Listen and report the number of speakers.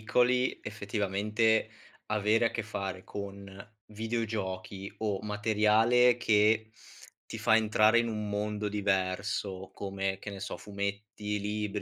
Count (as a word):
one